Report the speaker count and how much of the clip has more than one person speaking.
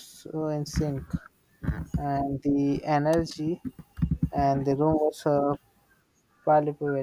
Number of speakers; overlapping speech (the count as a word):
one, no overlap